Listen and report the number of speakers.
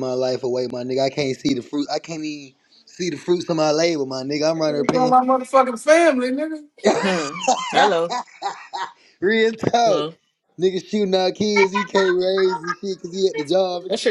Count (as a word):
three